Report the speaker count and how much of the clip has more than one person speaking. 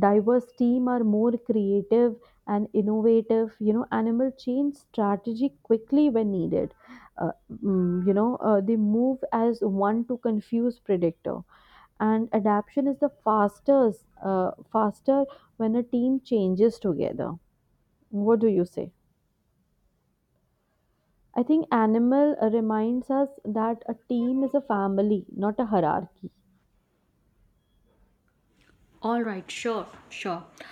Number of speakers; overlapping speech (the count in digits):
2, no overlap